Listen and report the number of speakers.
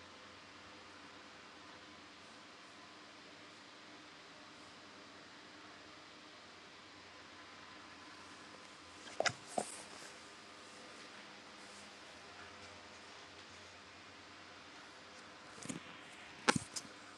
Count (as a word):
zero